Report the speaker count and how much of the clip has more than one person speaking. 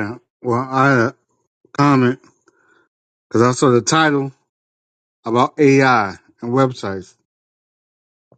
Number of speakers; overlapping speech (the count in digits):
1, no overlap